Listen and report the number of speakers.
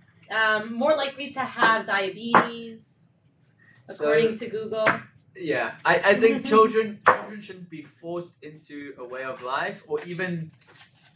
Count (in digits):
2